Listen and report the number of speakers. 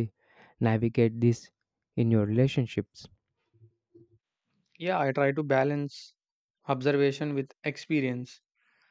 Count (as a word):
two